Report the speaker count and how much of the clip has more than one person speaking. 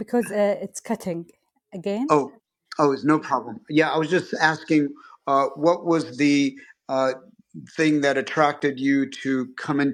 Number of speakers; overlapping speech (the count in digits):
2, under 1%